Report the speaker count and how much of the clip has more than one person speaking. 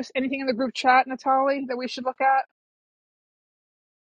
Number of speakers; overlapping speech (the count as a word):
one, no overlap